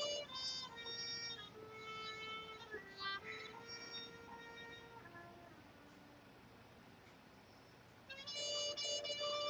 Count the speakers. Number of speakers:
0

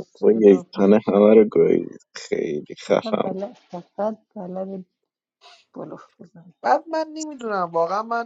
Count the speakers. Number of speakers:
3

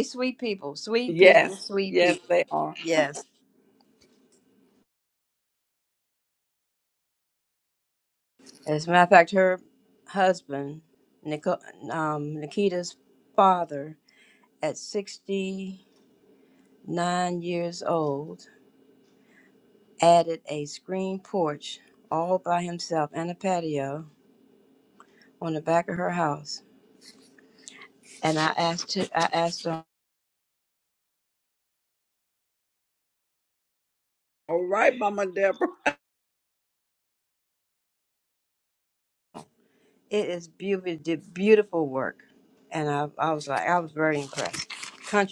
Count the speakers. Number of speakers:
2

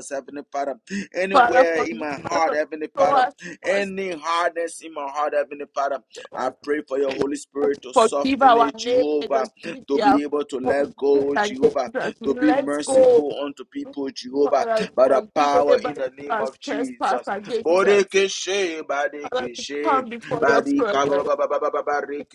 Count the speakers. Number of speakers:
2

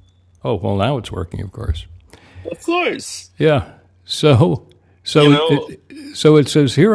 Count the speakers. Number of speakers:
2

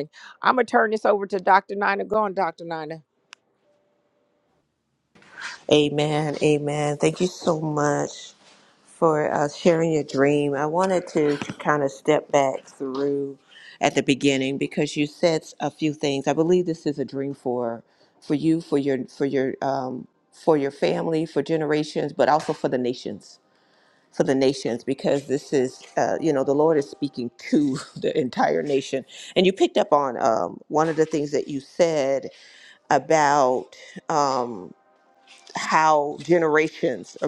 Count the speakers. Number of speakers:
2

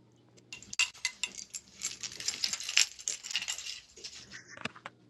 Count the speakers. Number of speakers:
0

